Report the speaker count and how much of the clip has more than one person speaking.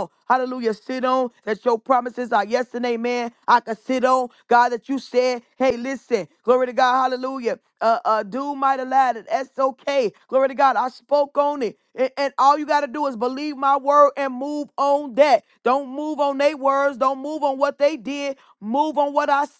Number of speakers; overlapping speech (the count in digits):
1, no overlap